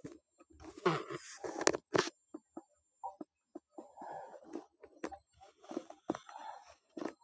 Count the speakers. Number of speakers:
zero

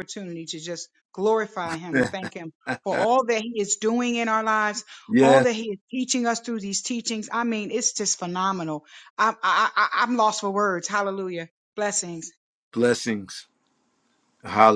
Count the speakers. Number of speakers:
two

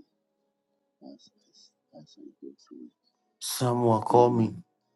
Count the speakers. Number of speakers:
two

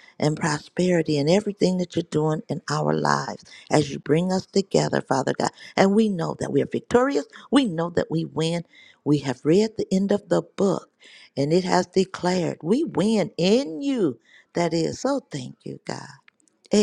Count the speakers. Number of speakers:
one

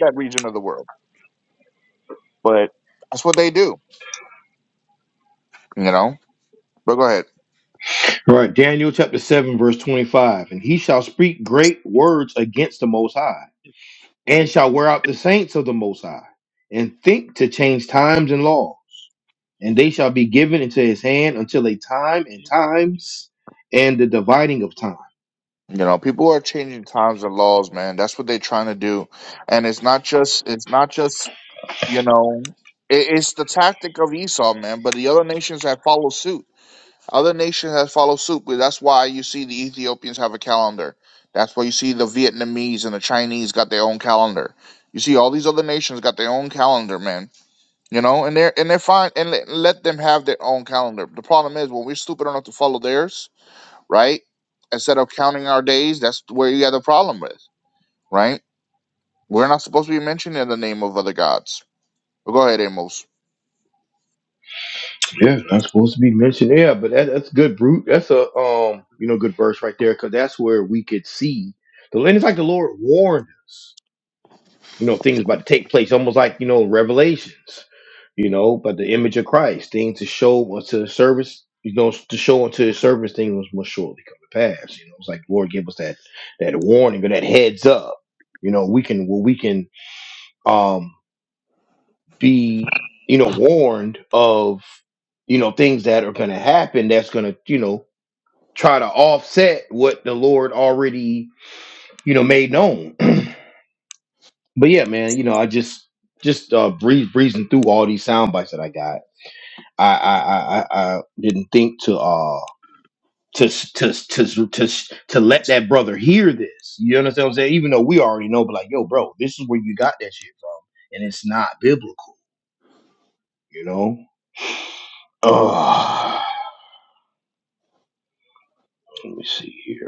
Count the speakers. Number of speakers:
two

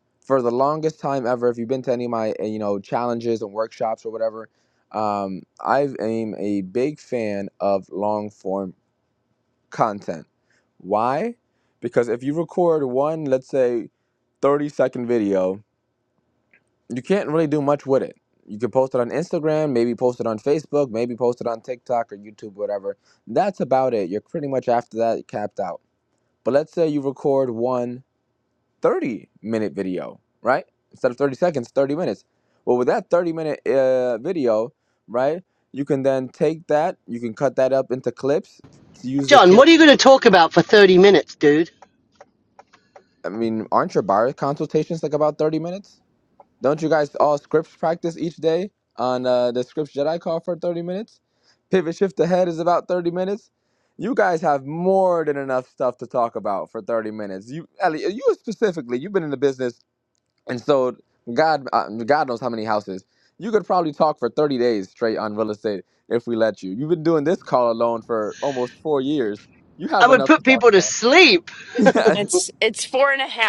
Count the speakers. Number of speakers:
three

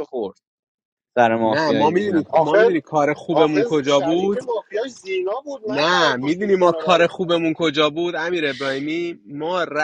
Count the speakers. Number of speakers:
three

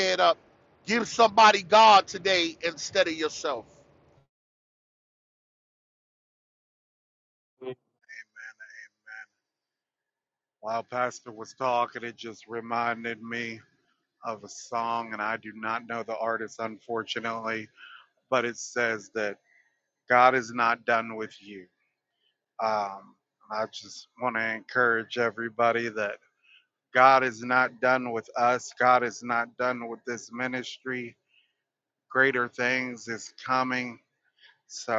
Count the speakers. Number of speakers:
two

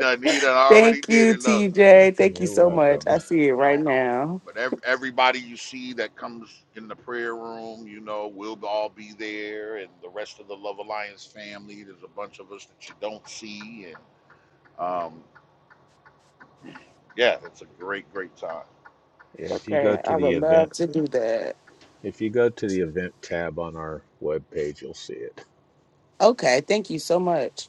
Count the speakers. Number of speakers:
three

